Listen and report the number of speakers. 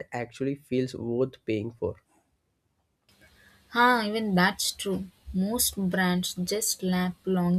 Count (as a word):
two